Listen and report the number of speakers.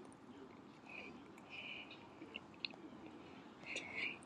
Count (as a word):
zero